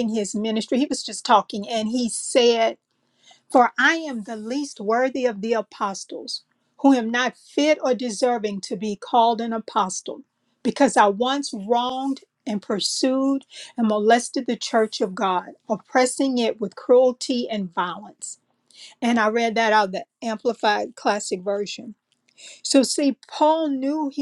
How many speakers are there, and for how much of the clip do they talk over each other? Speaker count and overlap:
1, no overlap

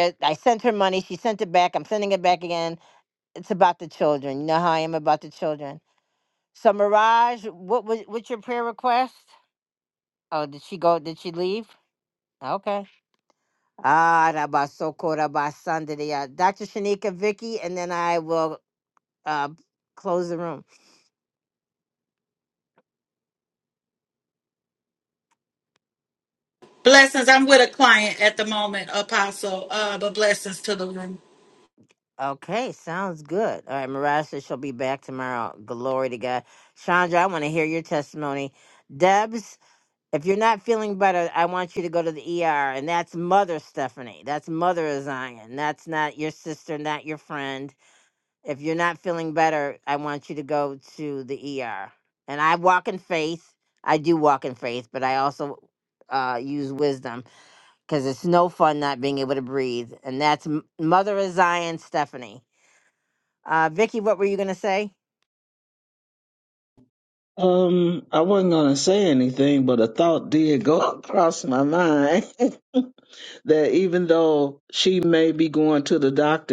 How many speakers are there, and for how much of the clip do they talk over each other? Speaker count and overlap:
3, no overlap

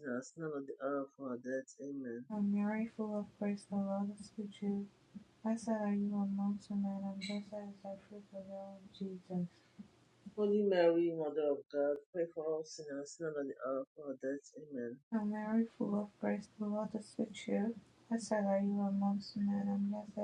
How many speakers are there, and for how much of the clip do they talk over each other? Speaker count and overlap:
2, no overlap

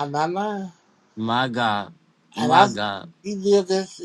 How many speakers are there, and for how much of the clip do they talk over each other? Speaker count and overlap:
2, about 10%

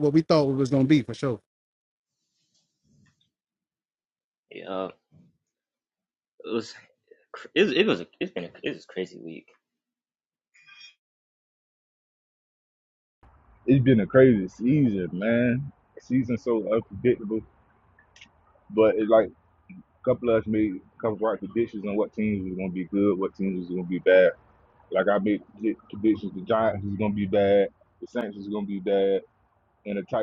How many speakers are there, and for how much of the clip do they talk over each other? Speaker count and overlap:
3, no overlap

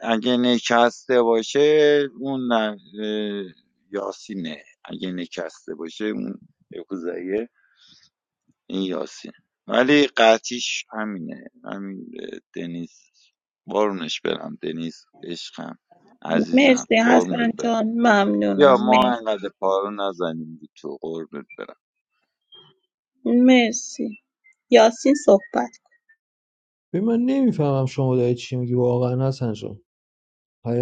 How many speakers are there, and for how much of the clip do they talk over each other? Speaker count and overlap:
3, about 6%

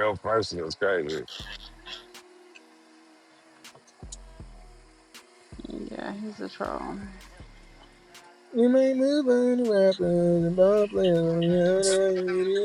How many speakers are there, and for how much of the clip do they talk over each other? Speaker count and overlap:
3, no overlap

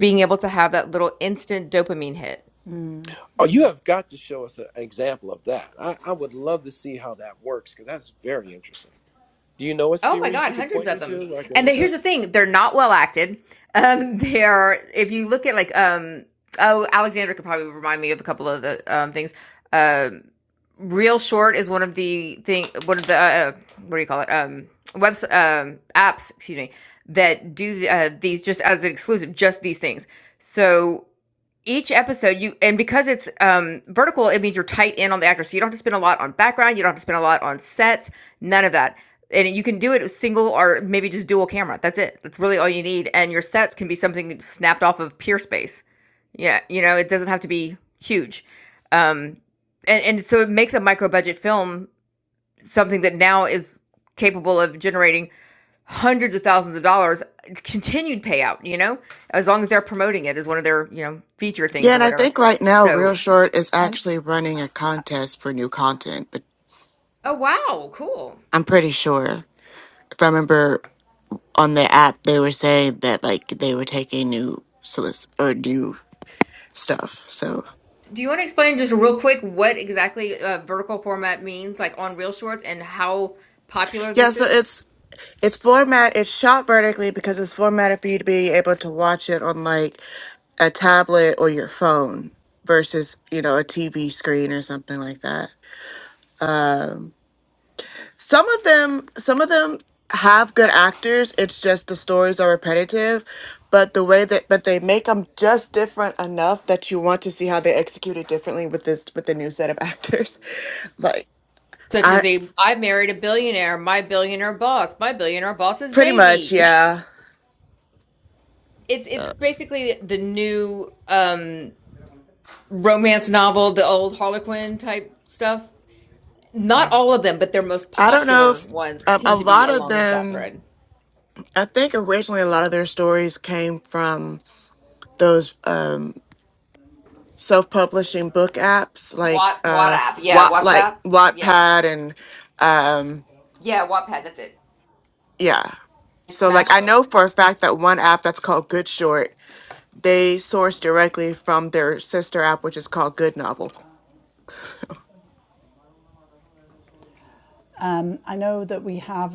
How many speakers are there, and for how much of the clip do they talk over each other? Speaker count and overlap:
4, about 5%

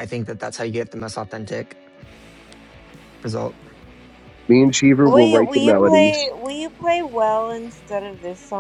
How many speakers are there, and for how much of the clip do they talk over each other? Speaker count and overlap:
3, about 14%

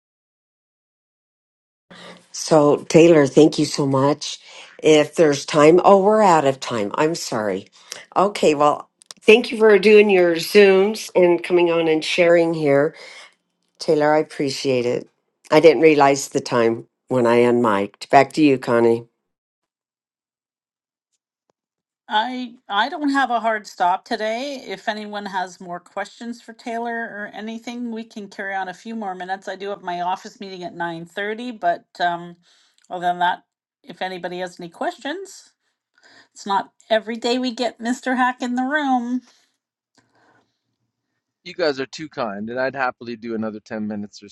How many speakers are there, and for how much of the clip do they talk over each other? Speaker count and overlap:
3, no overlap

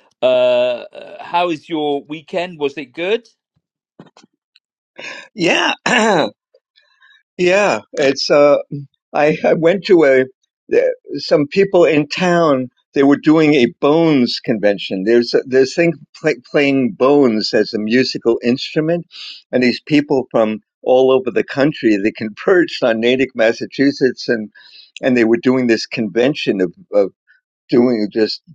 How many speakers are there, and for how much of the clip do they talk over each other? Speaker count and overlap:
2, no overlap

